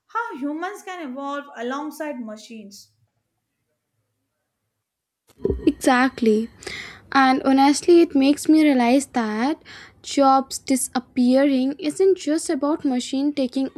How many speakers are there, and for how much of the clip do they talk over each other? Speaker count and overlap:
2, no overlap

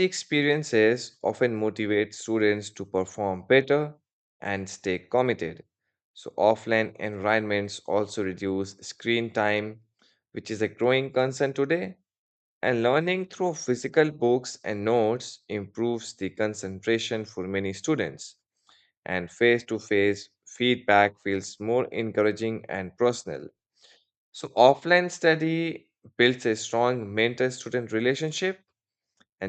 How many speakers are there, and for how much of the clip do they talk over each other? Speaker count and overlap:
1, no overlap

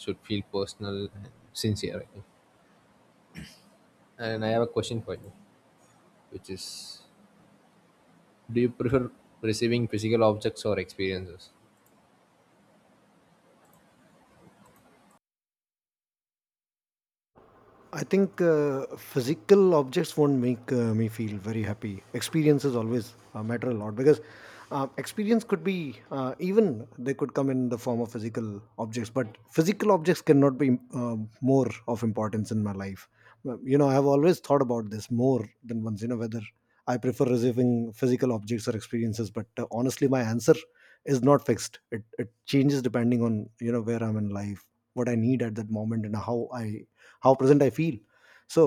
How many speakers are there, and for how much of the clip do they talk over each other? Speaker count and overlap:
2, no overlap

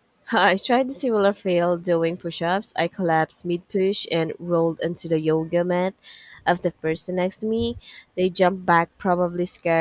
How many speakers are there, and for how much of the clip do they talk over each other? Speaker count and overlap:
1, no overlap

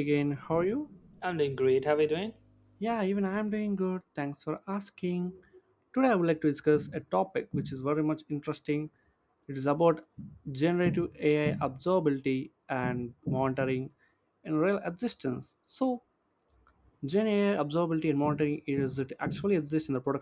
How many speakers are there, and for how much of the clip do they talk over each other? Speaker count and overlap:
2, no overlap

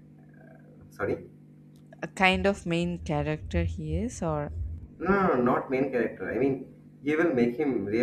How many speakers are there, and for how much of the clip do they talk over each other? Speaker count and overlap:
2, no overlap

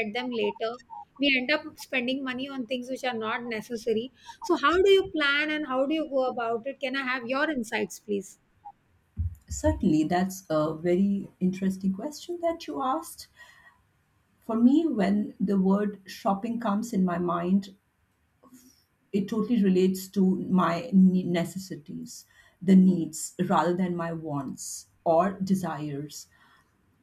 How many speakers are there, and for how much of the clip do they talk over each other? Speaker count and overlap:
2, no overlap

